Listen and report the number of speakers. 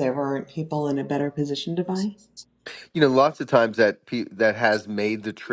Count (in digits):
2